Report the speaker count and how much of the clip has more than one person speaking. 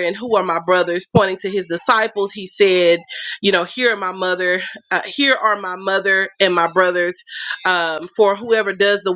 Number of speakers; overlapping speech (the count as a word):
one, no overlap